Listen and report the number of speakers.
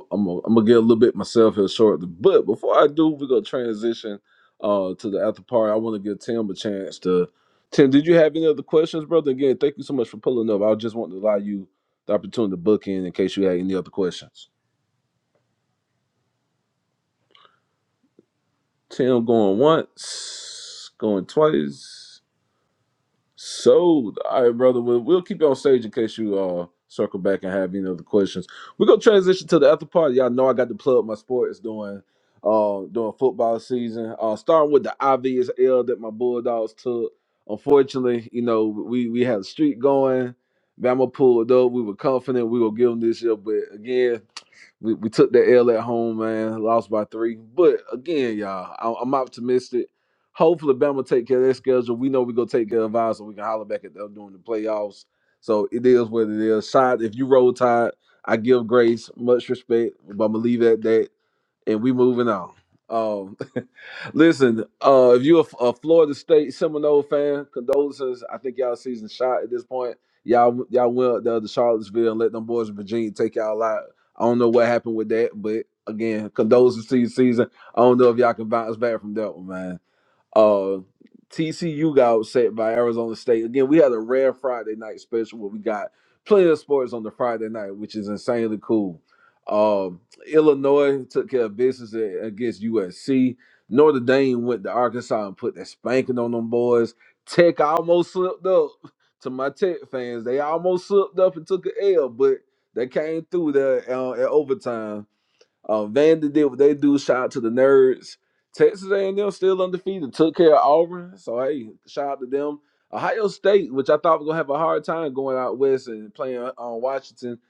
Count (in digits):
1